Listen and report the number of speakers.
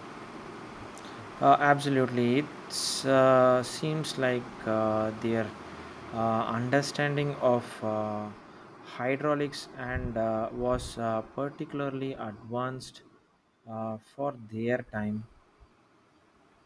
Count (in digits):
1